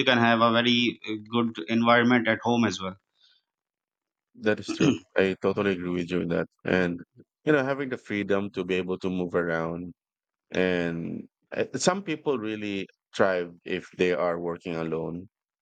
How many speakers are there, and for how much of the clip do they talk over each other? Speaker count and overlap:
two, no overlap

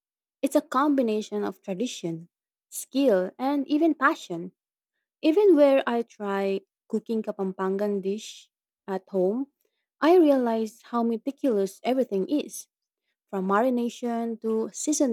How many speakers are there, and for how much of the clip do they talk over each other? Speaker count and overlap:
one, no overlap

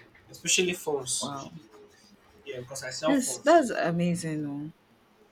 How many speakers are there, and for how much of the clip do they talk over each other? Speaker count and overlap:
two, about 10%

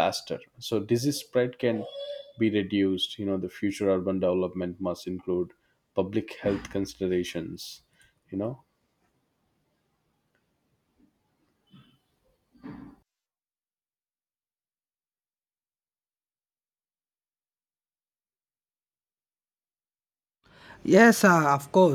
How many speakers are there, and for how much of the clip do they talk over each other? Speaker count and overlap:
two, no overlap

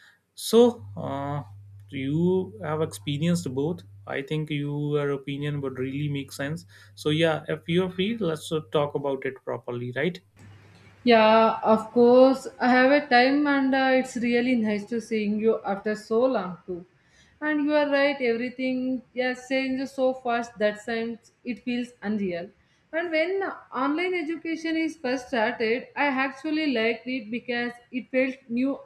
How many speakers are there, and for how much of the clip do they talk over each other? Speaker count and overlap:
two, no overlap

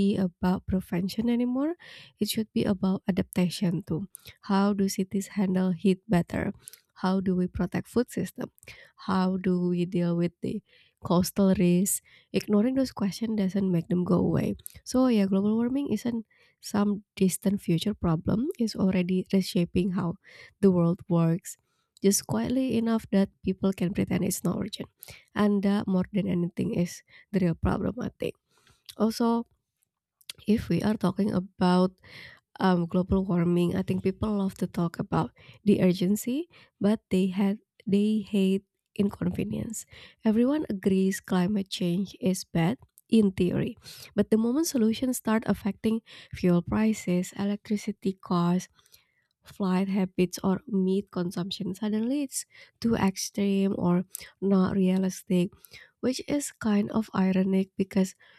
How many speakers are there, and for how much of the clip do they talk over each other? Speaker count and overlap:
one, no overlap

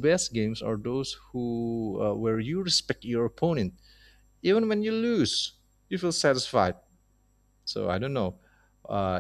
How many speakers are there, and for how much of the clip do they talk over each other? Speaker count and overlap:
one, no overlap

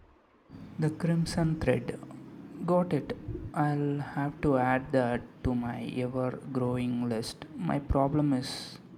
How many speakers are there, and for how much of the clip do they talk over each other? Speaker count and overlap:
one, no overlap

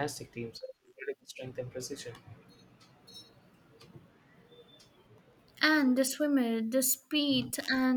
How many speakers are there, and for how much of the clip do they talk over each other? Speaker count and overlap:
two, no overlap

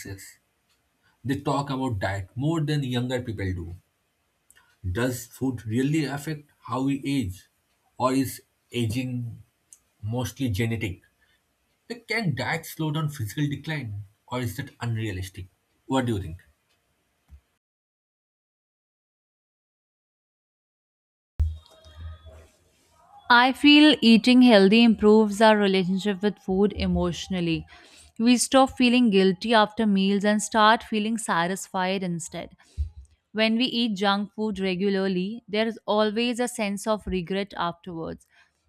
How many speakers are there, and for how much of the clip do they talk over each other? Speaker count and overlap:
two, no overlap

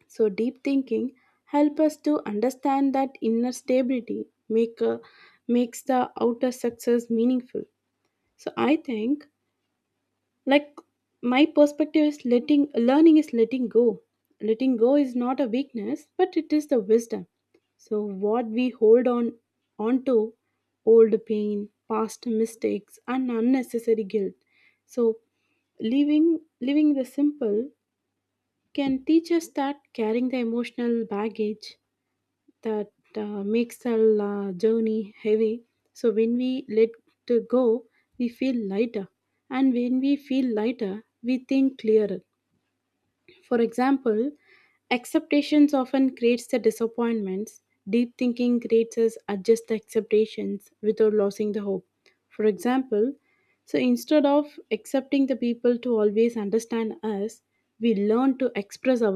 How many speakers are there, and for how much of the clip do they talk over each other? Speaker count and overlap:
one, no overlap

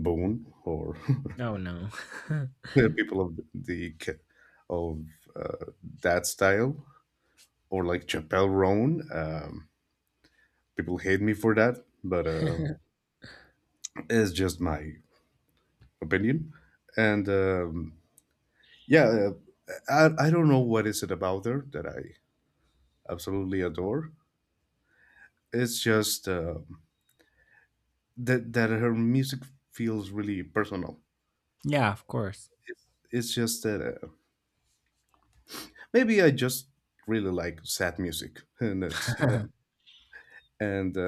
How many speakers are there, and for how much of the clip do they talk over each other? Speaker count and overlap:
two, no overlap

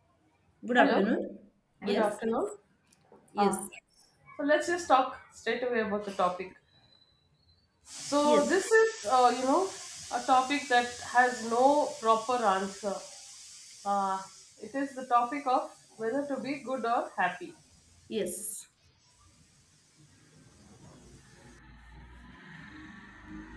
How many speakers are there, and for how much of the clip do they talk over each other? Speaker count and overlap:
two, about 5%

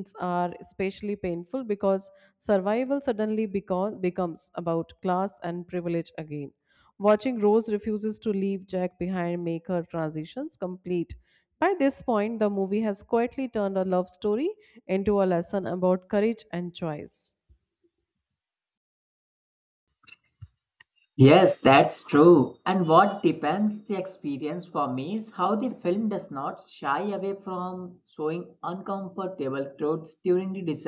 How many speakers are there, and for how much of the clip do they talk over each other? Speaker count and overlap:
two, no overlap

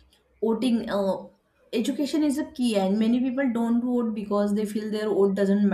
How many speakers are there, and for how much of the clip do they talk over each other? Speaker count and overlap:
one, no overlap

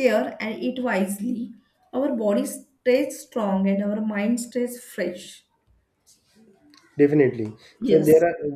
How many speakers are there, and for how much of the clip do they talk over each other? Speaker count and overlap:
two, about 3%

